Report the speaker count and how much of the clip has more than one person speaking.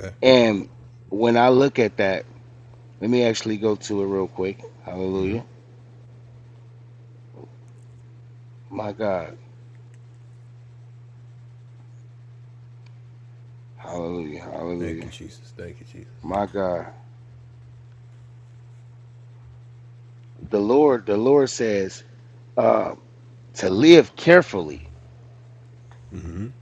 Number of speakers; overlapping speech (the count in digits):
2, about 1%